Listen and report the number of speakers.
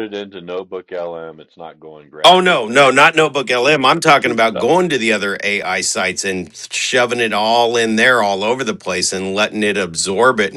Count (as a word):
two